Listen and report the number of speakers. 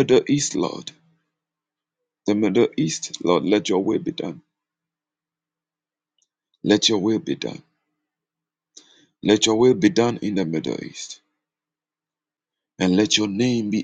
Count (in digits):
1